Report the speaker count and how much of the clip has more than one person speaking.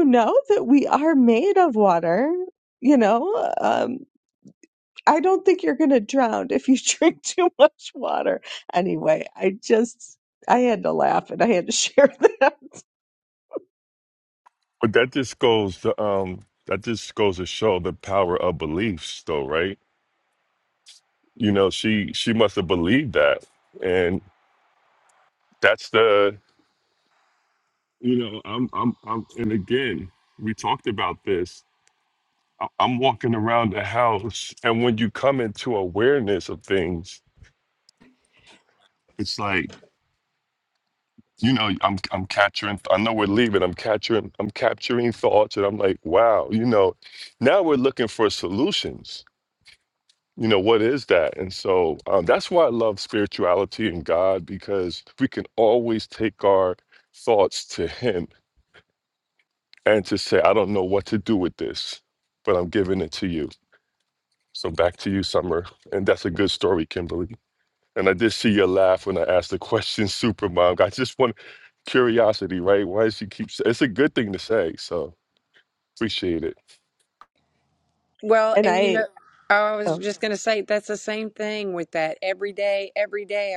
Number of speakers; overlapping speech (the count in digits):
3, about 1%